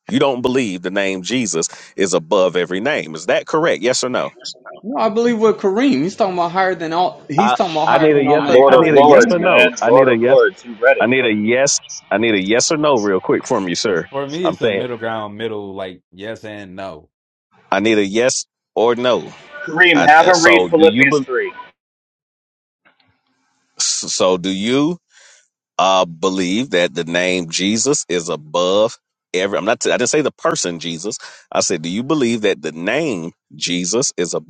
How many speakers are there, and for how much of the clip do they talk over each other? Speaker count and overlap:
4, about 15%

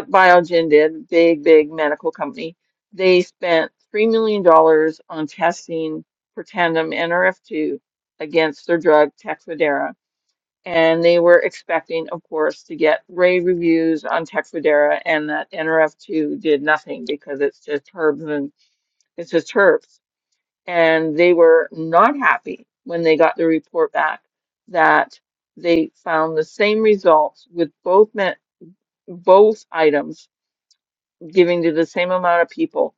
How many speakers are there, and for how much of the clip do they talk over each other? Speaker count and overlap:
1, no overlap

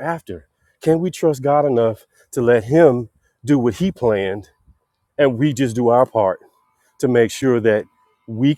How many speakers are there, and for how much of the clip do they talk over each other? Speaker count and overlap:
1, no overlap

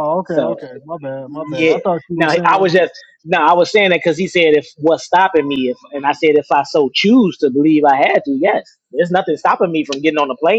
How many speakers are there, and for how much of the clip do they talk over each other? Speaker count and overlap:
2, about 11%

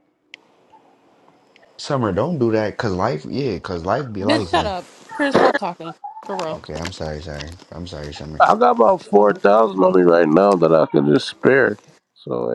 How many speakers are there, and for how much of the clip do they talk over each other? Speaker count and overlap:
3, about 5%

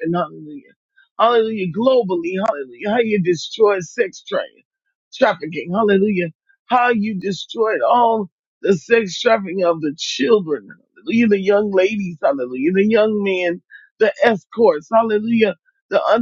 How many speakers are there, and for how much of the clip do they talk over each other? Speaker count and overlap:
1, no overlap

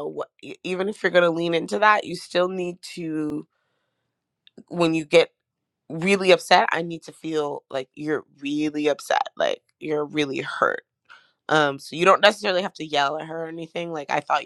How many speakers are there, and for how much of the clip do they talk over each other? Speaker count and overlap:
1, no overlap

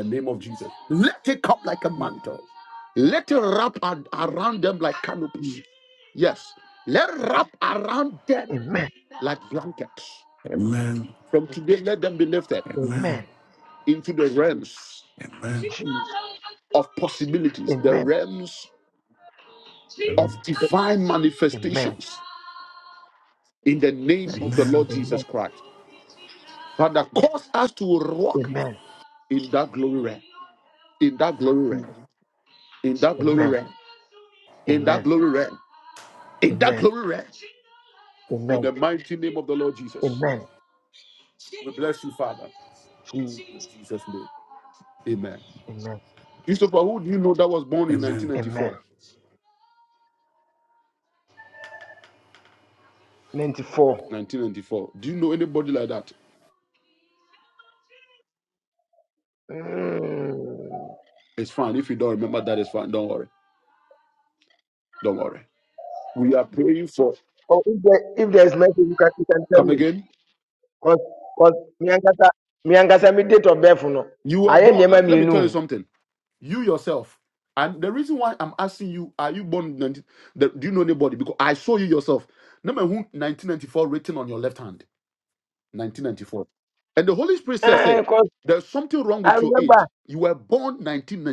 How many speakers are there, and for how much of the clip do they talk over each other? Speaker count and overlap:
3, about 7%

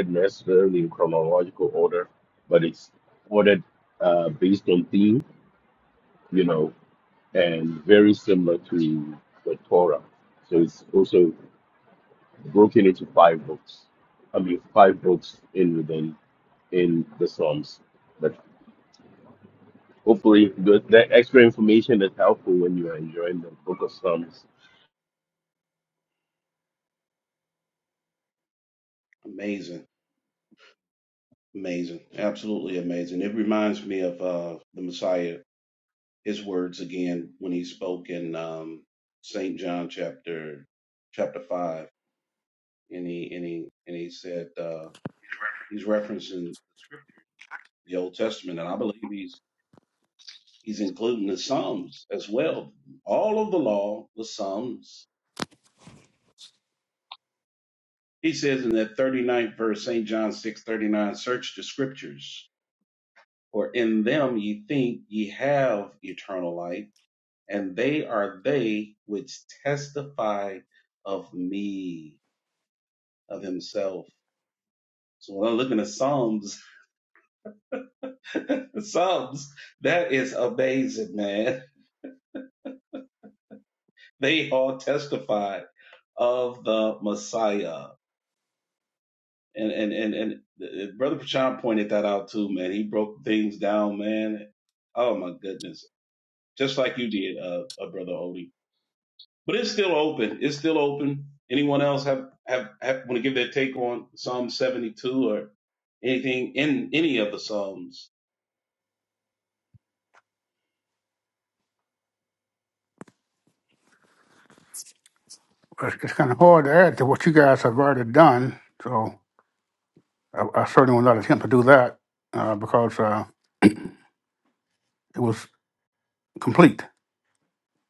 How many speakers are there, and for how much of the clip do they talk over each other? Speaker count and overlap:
3, no overlap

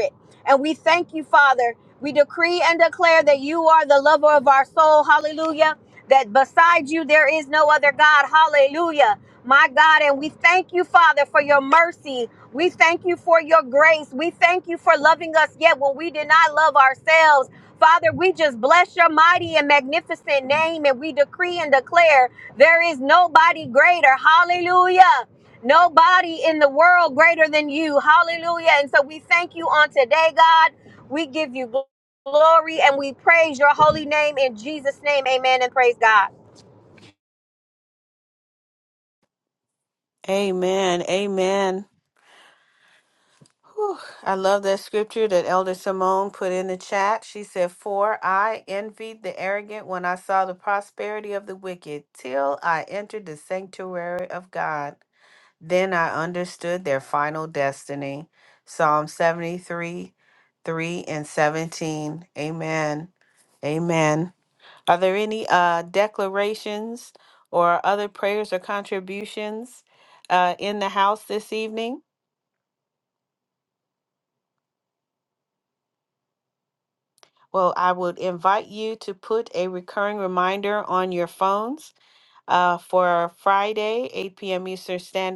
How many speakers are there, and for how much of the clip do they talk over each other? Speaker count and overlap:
2, no overlap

